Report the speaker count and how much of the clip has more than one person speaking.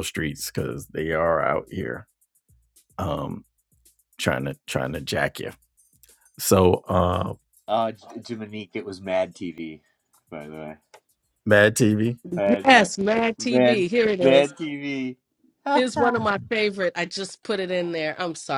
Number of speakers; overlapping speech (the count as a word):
three, about 8%